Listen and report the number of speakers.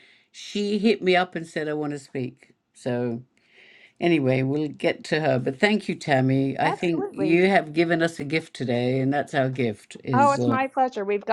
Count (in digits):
2